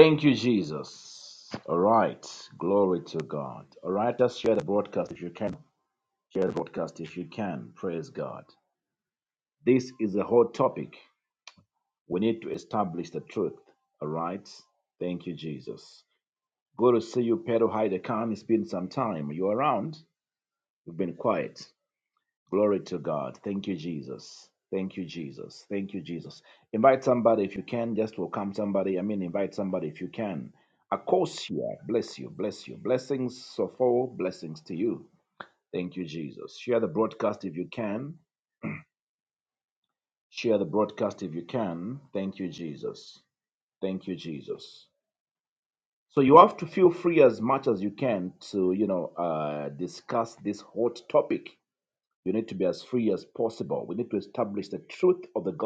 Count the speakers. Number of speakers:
1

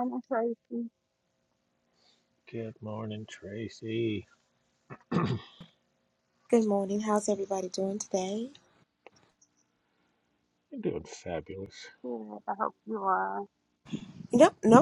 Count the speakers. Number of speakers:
3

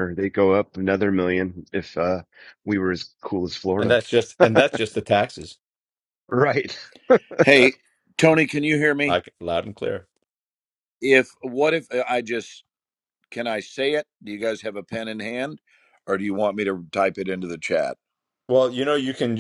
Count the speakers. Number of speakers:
3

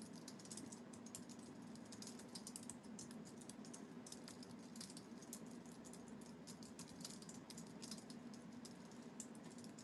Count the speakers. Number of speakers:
0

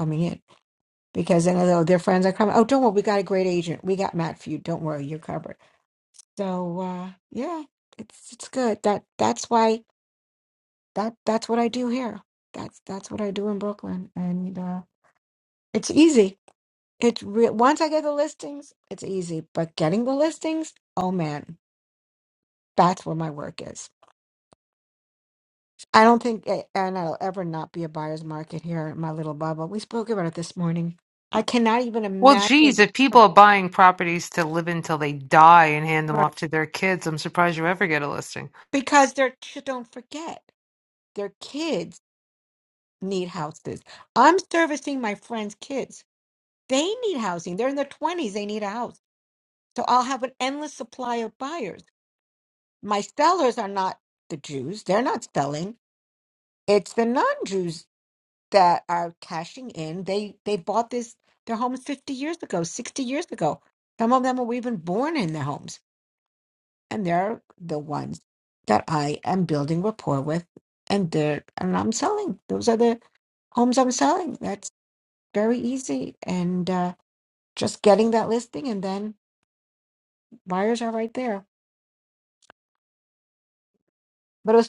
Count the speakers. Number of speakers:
2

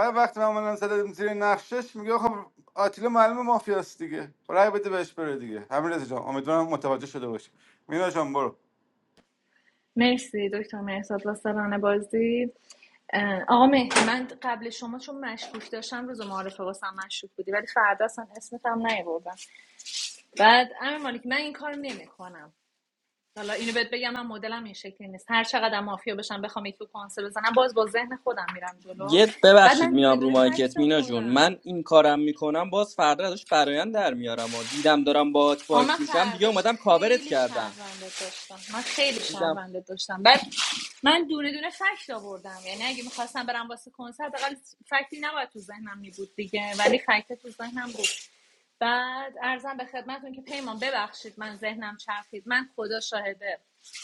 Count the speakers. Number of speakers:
3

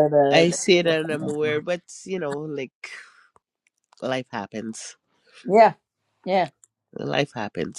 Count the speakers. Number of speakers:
2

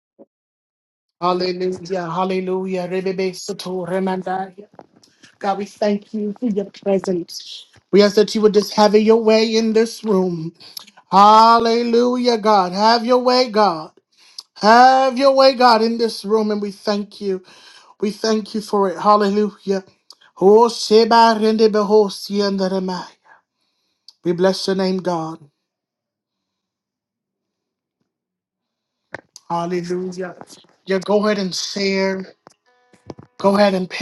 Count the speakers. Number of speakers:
1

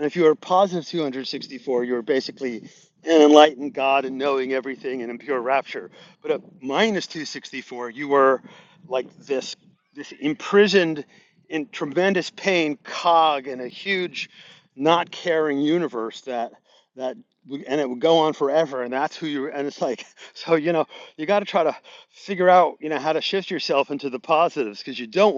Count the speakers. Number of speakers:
1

